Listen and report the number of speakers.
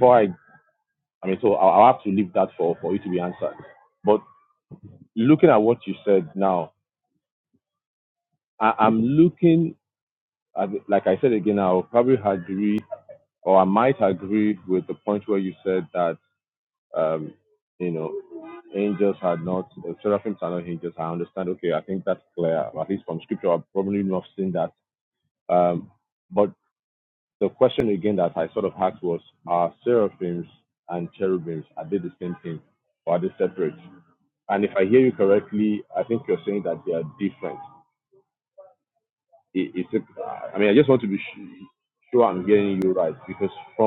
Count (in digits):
1